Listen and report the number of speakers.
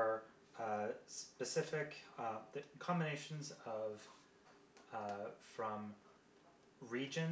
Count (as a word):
one